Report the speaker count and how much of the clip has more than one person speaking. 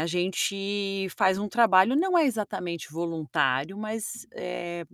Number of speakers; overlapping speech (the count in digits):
1, no overlap